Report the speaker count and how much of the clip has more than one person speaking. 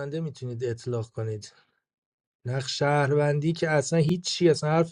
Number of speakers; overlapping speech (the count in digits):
1, no overlap